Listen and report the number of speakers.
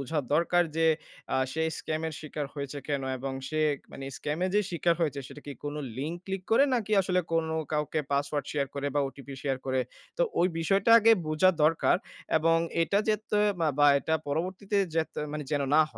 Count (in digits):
1